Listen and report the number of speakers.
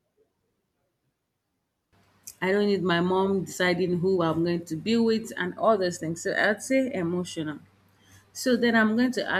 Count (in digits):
1